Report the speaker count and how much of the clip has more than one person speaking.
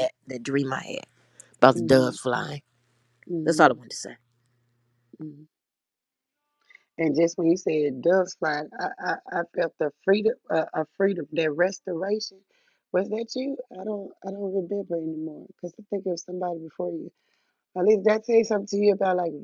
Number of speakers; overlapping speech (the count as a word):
two, about 4%